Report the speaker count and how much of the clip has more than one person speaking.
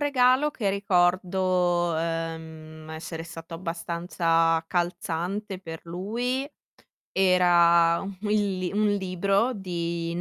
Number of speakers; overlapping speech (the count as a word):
one, no overlap